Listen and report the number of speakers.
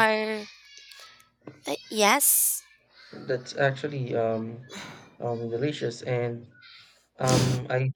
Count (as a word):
two